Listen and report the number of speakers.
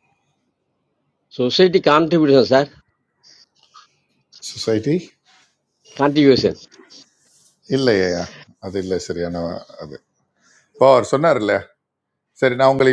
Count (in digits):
2